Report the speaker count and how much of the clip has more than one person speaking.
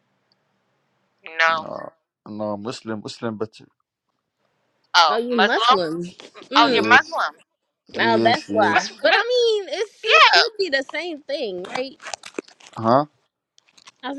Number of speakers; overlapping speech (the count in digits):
3, about 21%